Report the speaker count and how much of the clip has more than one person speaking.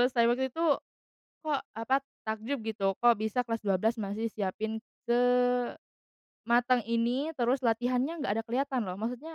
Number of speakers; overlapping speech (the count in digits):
1, no overlap